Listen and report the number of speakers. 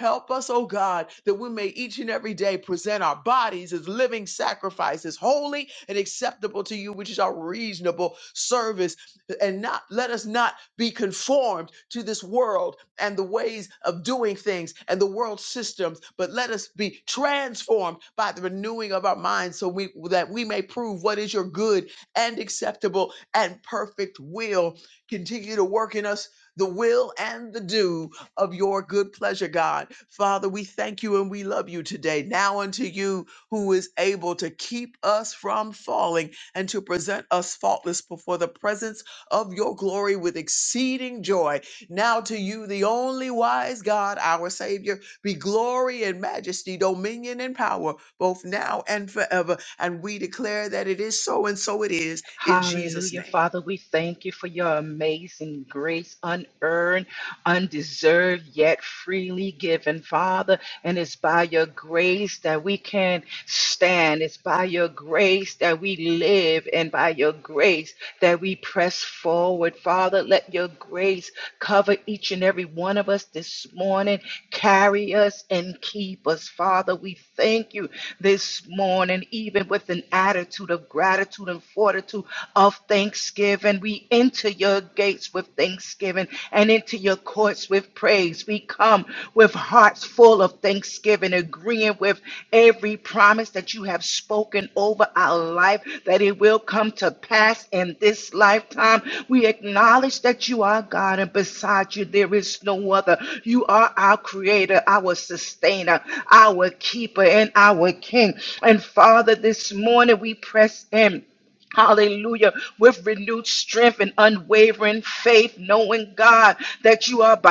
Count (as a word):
two